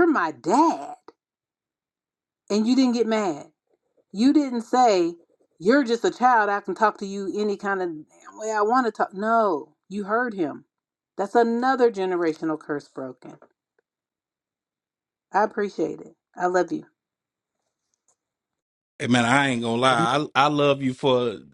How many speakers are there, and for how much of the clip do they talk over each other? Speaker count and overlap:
two, no overlap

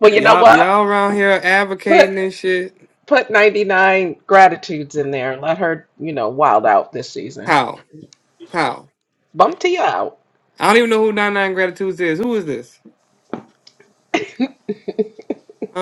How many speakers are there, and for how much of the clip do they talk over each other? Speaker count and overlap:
two, about 7%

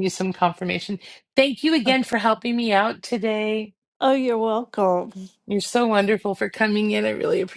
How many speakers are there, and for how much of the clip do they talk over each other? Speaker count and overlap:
two, about 3%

